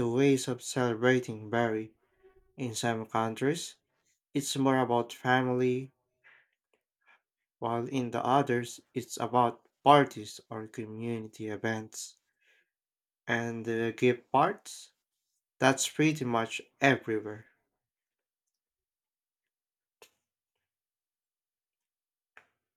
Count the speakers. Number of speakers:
one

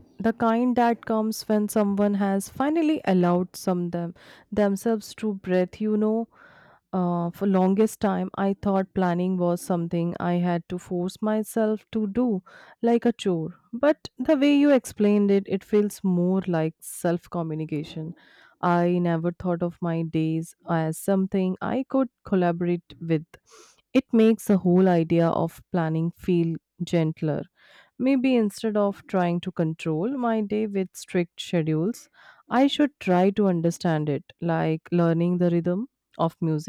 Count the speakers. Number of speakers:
one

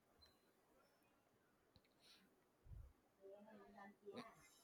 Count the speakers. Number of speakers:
zero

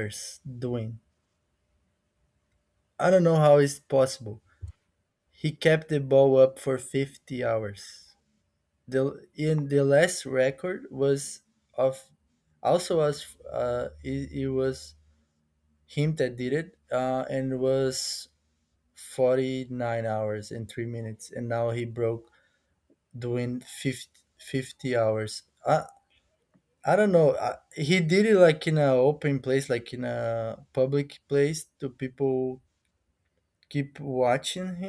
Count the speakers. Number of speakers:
one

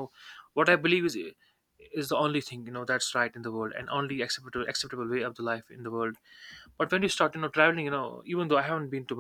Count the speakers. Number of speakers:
one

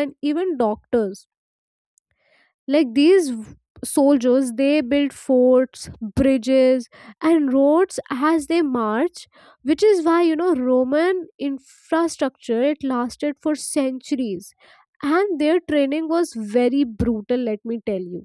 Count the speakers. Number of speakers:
one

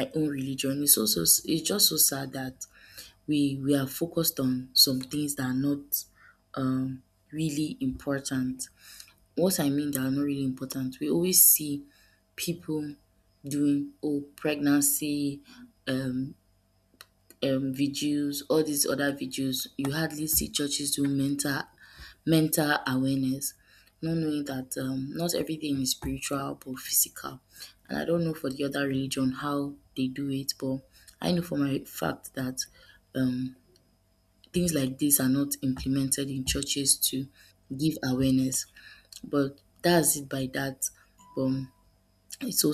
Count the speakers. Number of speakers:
one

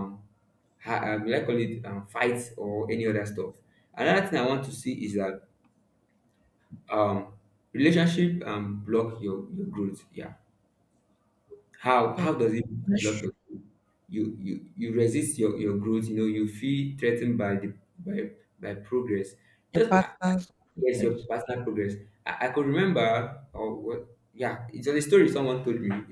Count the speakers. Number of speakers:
two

